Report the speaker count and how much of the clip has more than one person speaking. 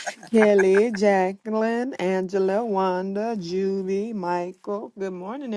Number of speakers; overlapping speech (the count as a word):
one, no overlap